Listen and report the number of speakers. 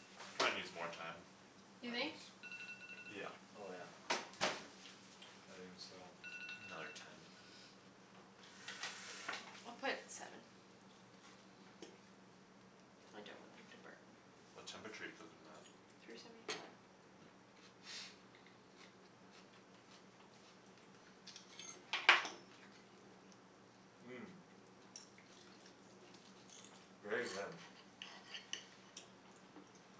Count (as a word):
three